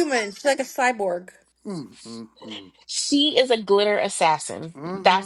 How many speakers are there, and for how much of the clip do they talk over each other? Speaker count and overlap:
three, about 10%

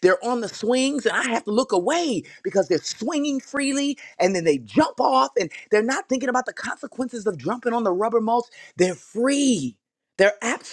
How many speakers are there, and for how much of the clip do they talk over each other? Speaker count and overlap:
one, no overlap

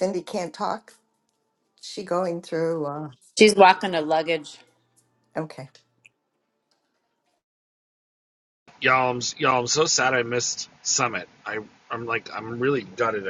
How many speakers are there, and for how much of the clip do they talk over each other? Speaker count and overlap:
three, no overlap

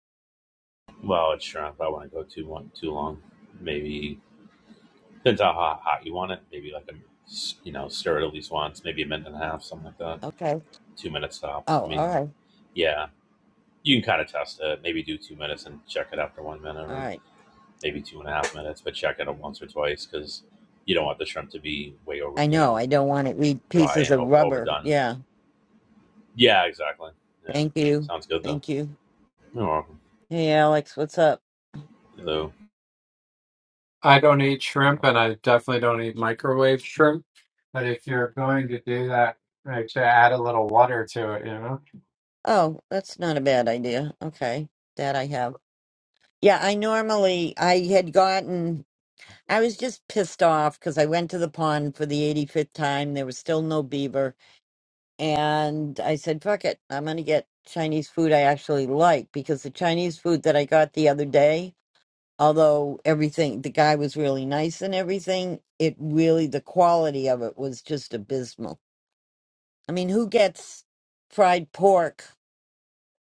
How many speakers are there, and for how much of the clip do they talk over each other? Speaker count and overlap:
three, about 3%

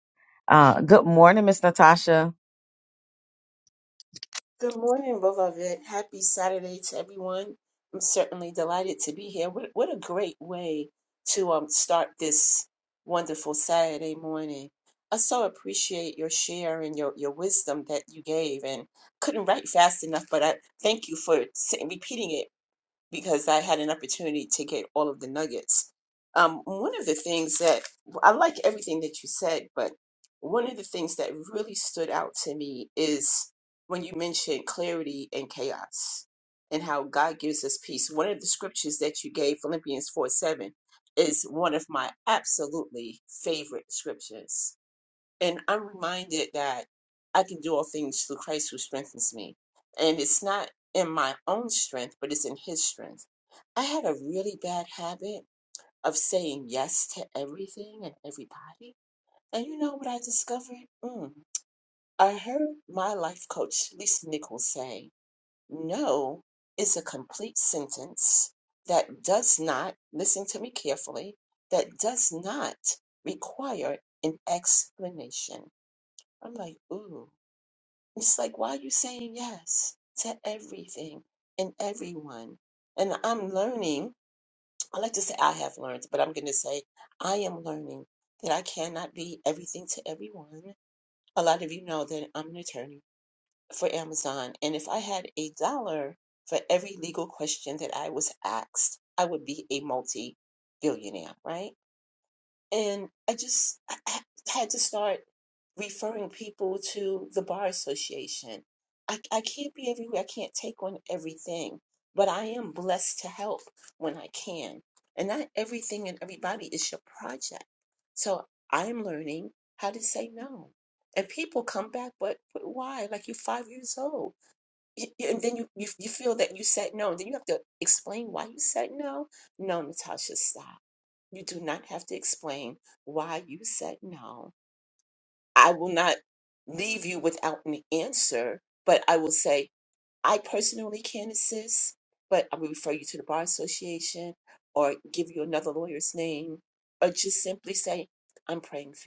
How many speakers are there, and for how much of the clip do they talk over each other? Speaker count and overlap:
two, no overlap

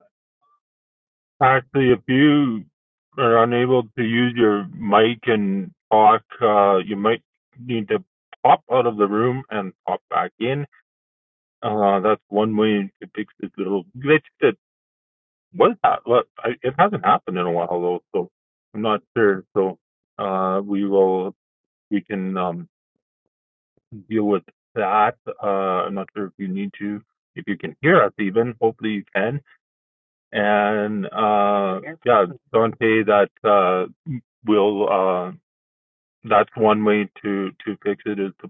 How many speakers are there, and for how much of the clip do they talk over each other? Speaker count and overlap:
one, no overlap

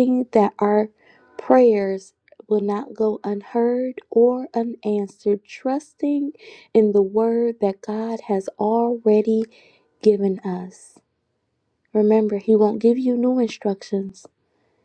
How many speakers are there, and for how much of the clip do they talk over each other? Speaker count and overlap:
one, no overlap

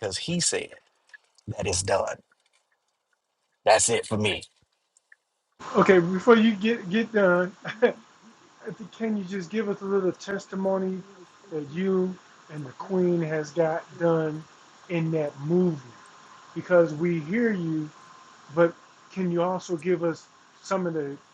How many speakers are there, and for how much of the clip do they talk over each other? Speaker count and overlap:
two, no overlap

